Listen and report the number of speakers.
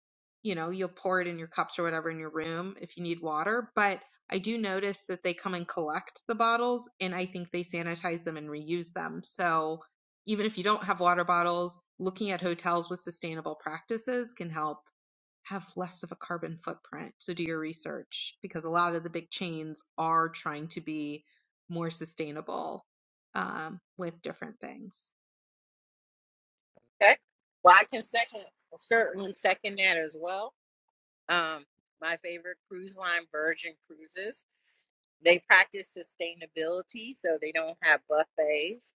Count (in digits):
2